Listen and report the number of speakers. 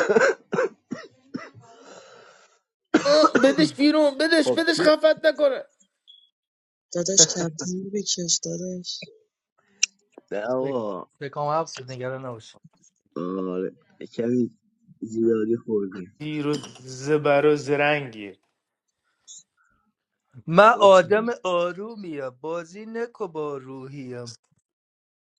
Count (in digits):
4